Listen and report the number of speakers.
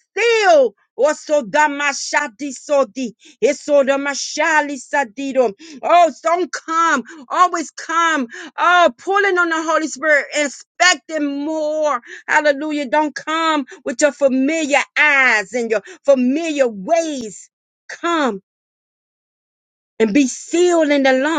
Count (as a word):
one